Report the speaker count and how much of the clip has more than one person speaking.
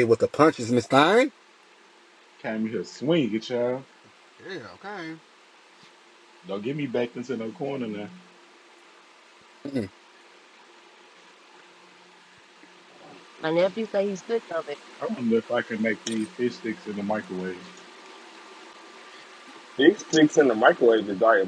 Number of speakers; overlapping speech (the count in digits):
4, no overlap